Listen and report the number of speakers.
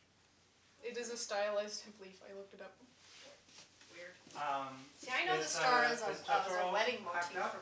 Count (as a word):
three